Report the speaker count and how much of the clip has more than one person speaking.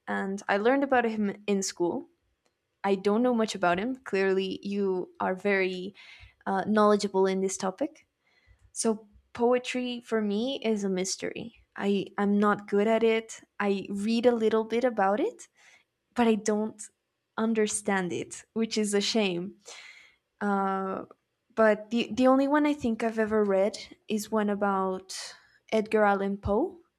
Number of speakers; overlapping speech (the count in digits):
1, no overlap